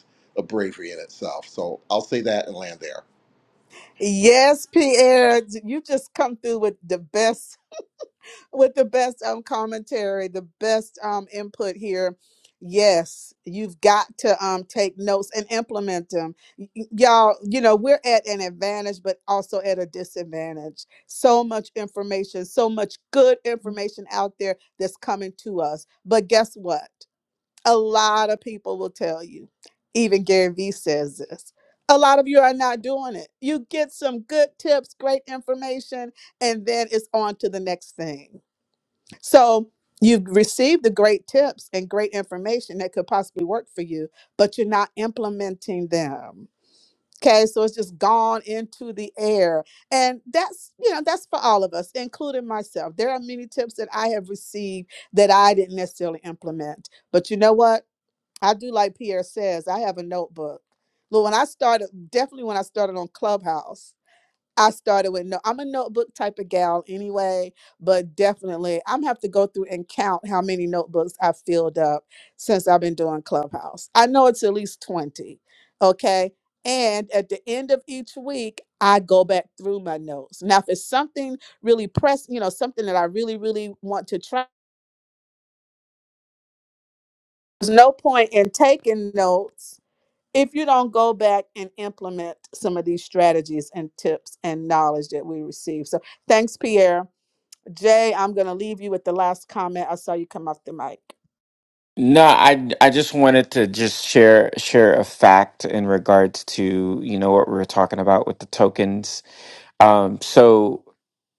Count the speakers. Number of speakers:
3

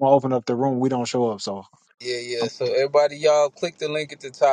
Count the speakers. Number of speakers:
2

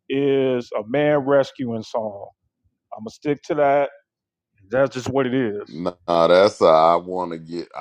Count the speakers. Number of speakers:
2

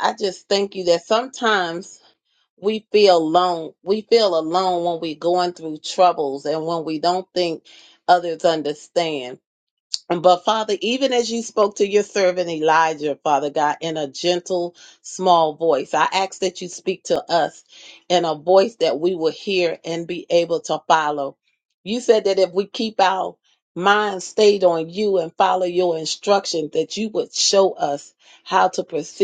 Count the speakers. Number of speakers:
1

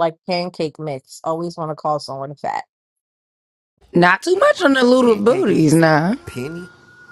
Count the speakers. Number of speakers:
3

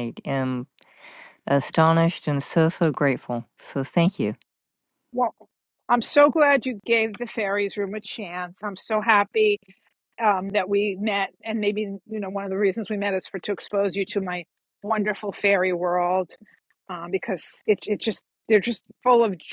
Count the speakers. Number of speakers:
2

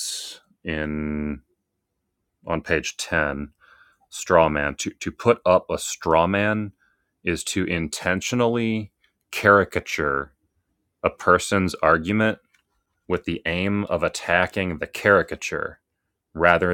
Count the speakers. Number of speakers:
1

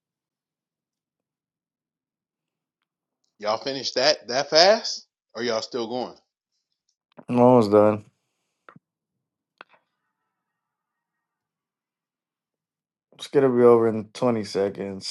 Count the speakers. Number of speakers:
2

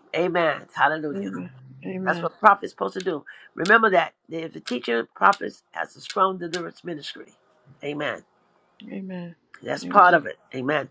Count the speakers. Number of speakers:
2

